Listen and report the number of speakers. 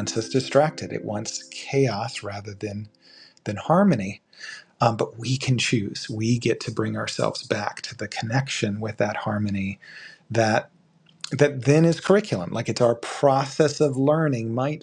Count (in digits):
1